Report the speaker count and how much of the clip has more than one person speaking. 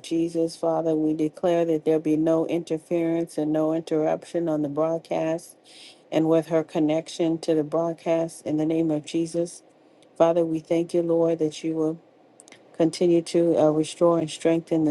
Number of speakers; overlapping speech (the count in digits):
1, no overlap